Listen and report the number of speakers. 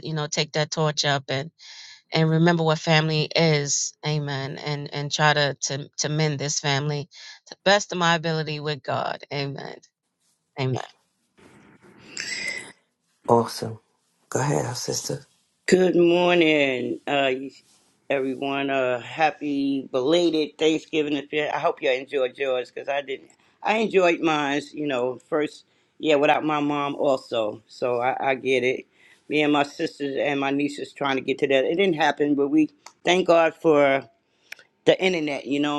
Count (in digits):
3